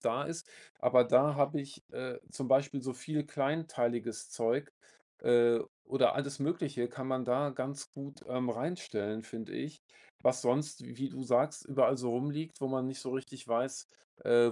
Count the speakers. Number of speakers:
one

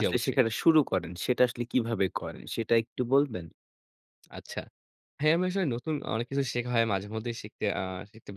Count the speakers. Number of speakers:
two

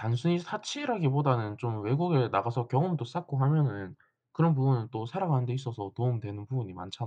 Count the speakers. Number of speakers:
one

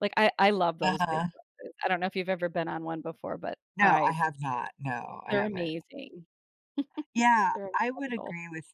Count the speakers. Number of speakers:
two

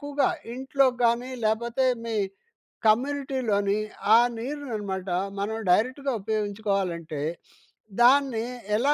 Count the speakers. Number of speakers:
one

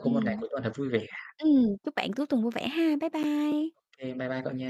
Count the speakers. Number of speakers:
two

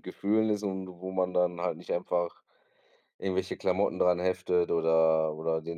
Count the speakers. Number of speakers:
one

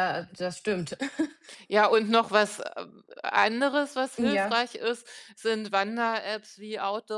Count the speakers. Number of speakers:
two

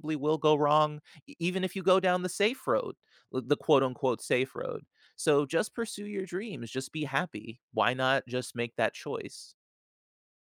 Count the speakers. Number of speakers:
one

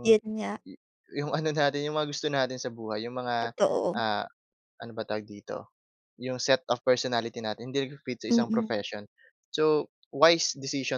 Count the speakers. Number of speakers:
two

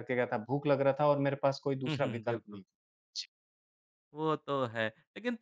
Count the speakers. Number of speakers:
two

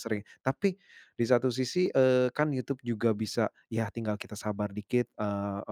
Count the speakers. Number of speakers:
one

